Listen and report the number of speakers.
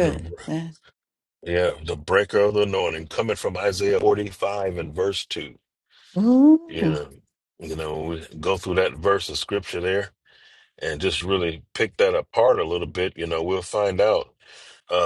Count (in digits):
2